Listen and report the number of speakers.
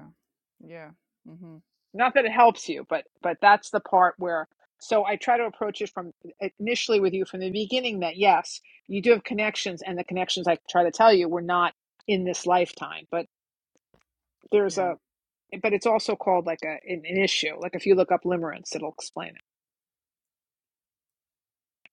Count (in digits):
2